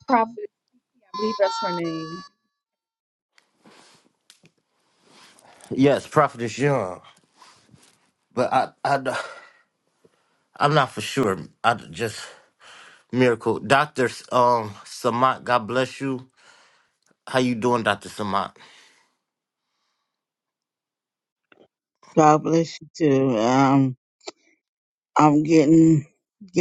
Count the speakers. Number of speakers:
3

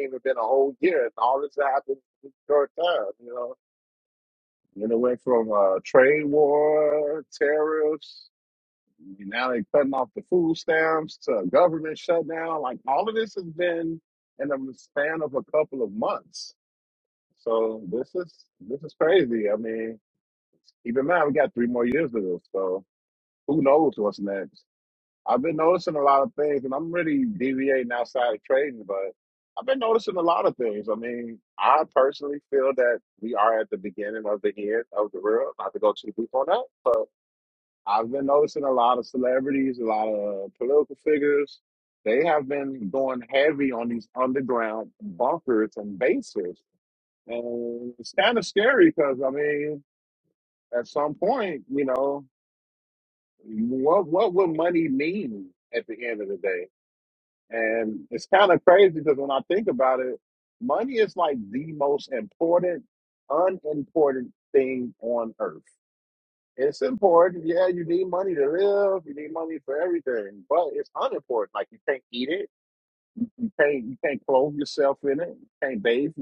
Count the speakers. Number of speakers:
1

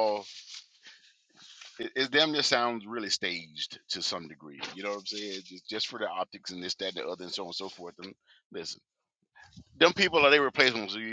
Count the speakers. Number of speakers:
1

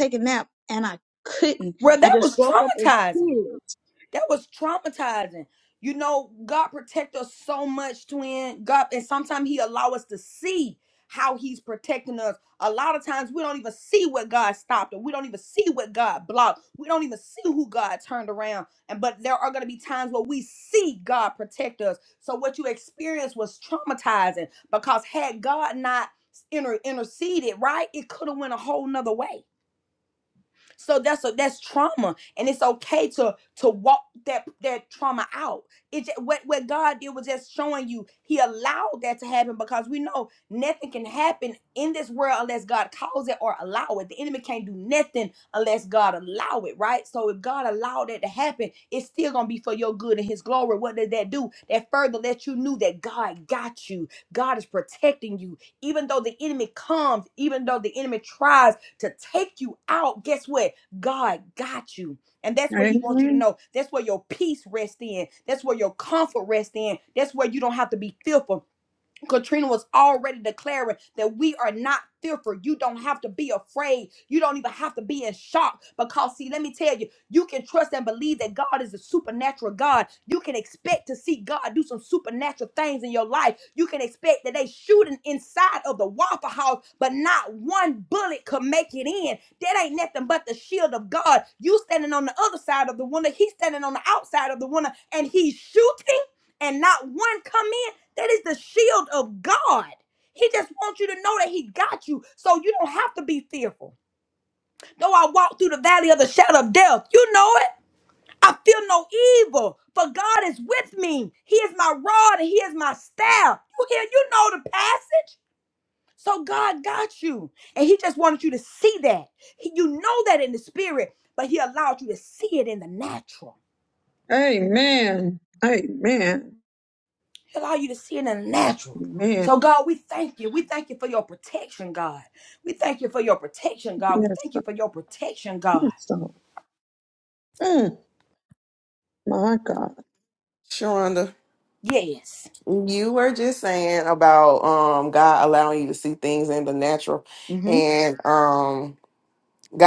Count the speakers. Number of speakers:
4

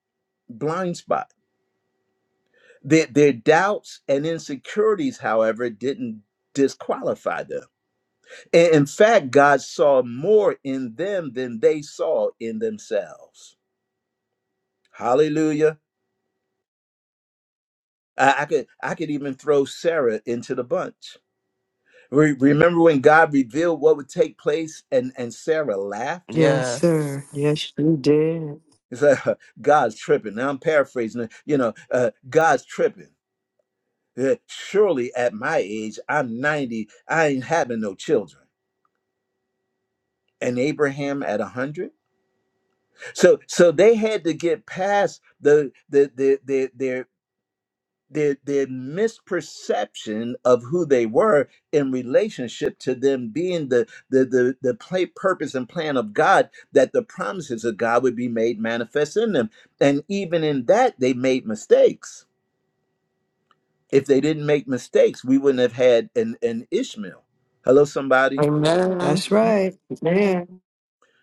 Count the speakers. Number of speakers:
3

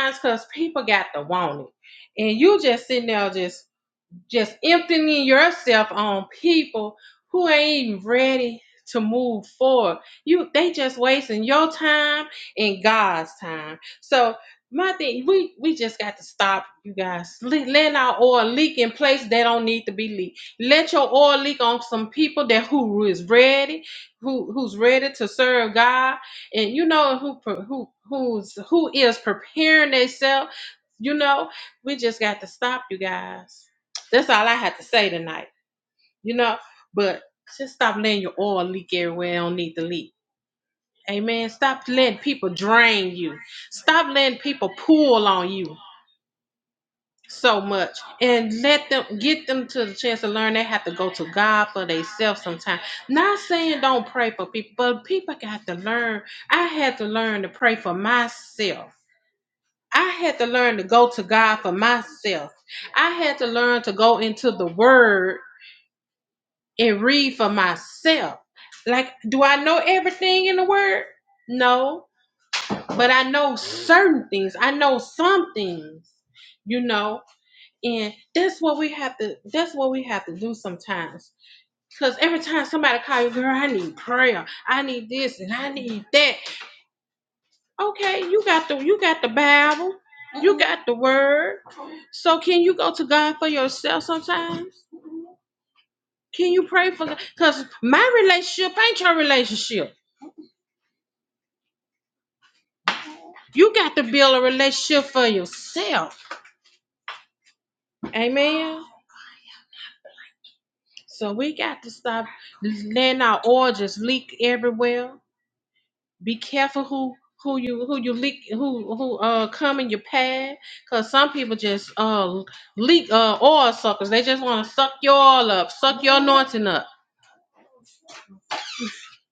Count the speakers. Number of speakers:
1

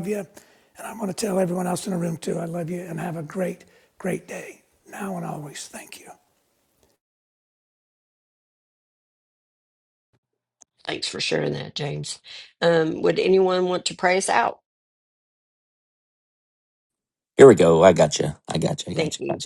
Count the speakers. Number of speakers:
3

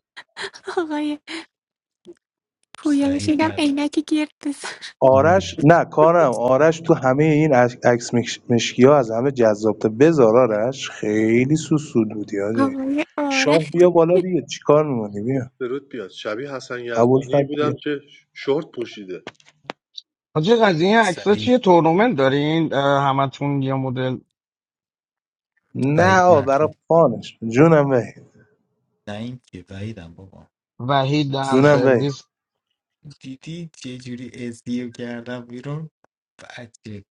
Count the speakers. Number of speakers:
5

